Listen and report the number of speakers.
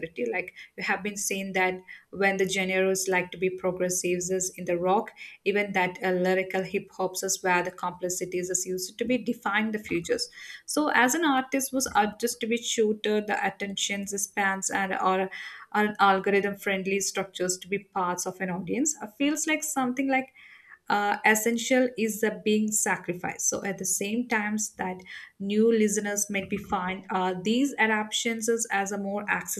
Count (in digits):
1